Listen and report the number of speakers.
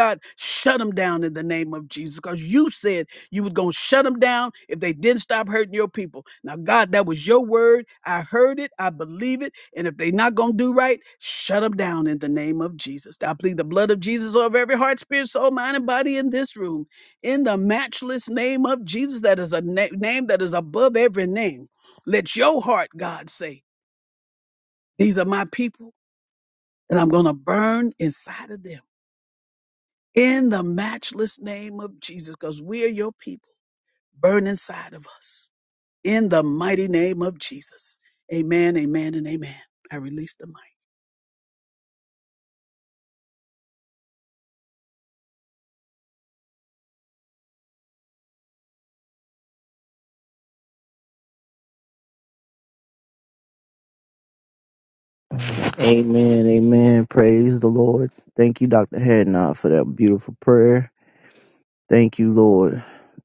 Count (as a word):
two